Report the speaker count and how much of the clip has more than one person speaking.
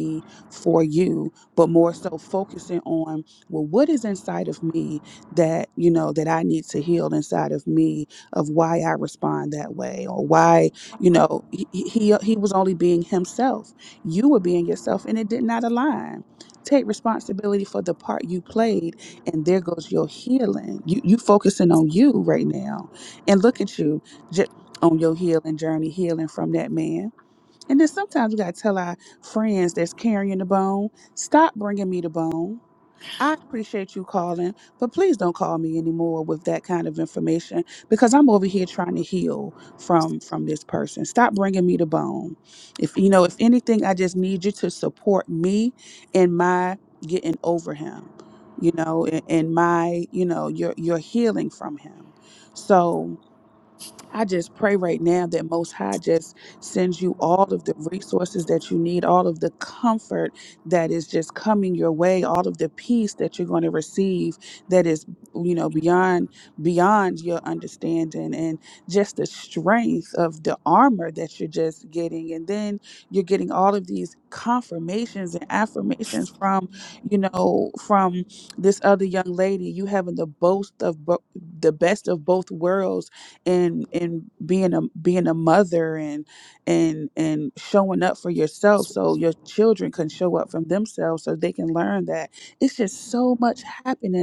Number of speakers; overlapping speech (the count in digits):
1, no overlap